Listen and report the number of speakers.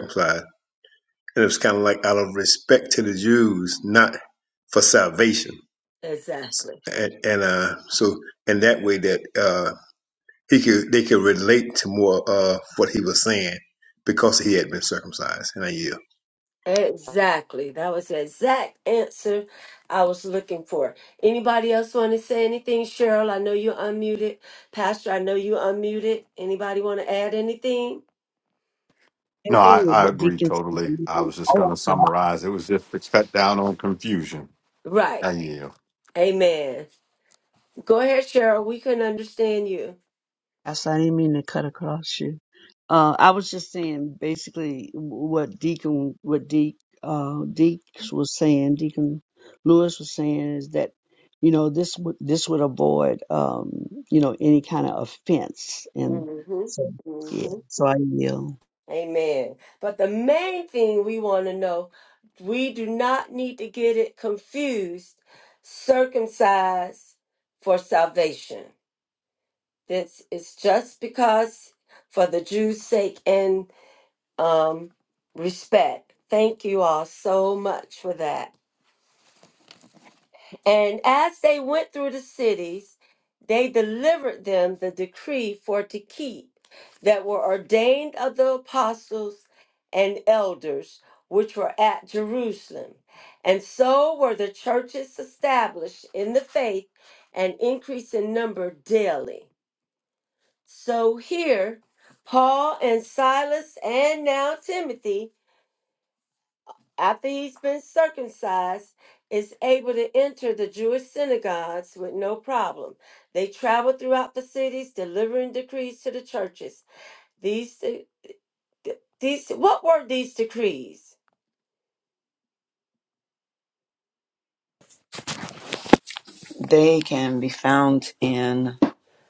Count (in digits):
5